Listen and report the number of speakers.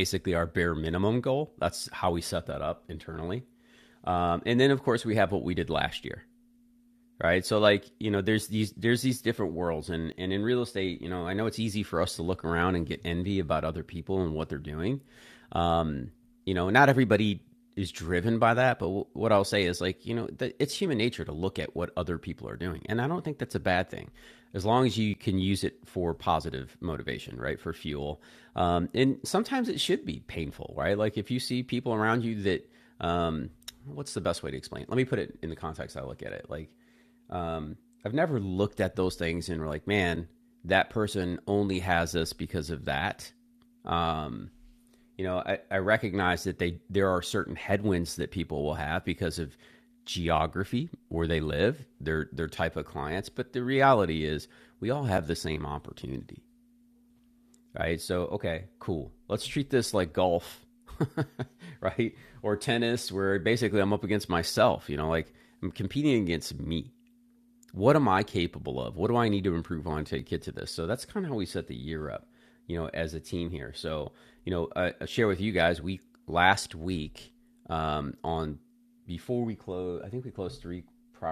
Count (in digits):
1